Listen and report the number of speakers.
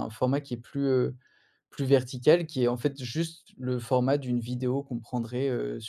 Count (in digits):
1